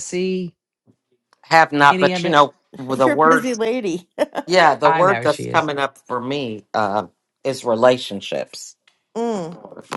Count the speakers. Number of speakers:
three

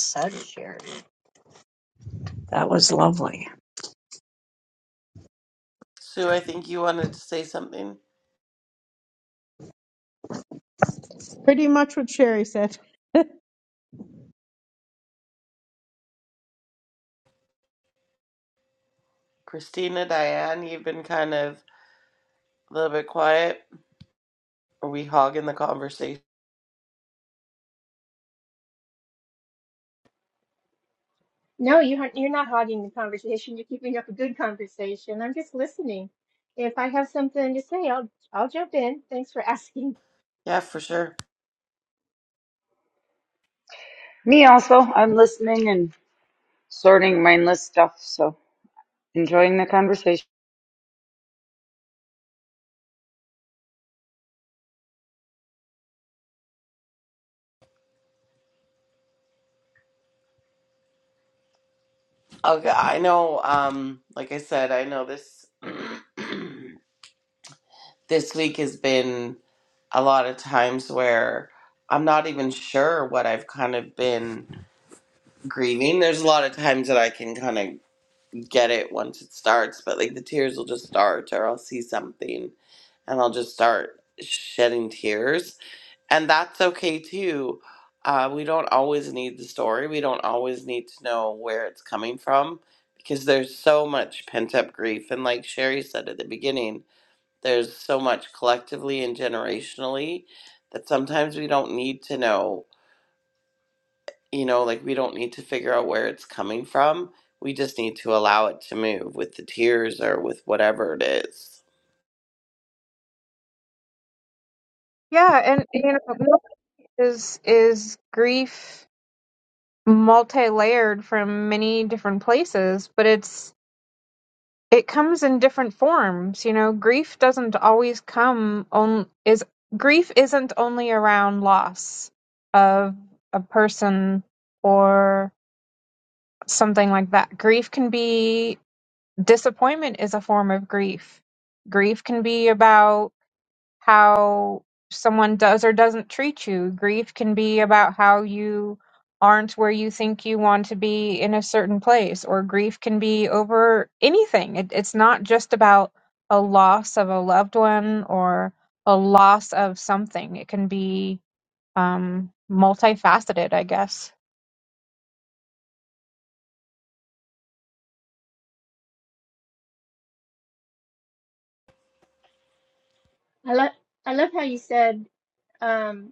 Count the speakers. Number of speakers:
six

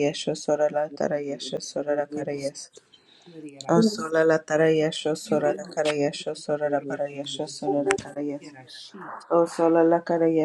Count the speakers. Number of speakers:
two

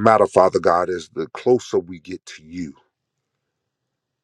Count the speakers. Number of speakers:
one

